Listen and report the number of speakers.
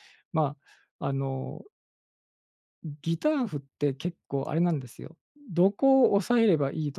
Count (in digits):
1